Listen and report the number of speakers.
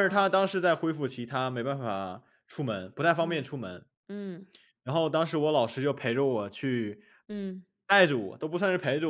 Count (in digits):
2